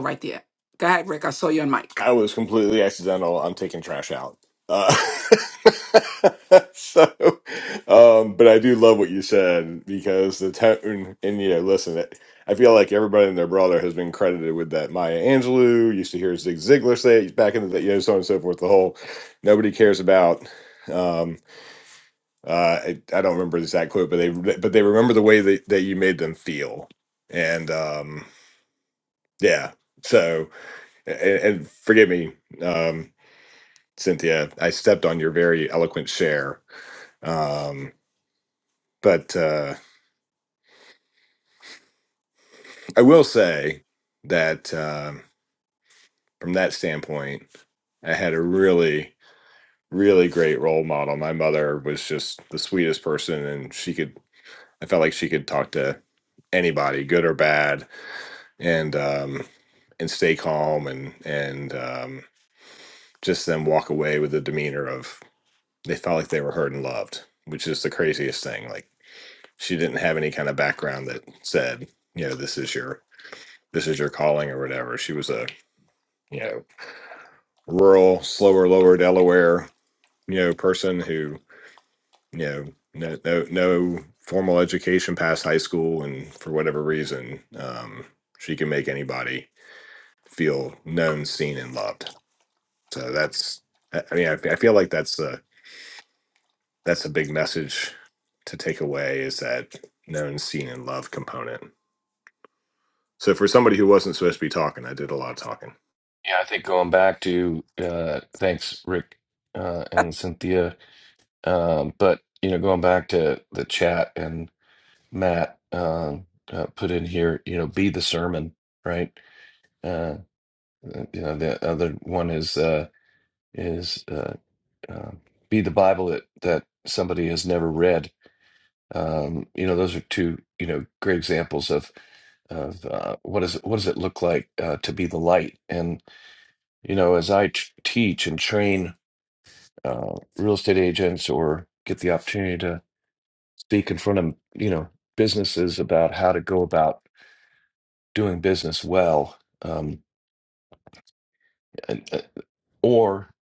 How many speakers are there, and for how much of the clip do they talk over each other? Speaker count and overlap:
3, no overlap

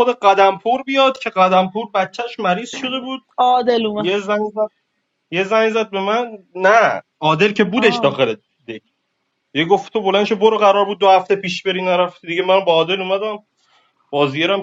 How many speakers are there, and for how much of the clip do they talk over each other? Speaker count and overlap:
2, about 3%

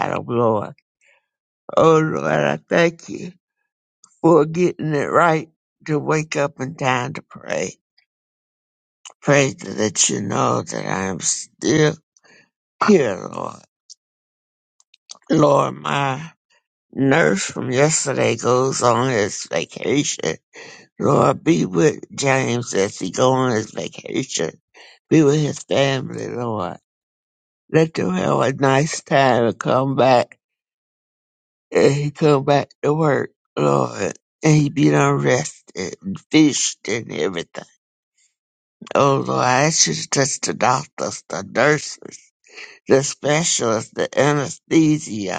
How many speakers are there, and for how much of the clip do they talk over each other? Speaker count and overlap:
1, no overlap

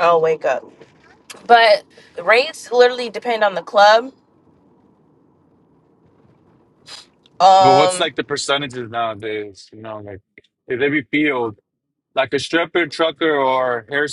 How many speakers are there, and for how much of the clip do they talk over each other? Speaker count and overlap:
2, about 3%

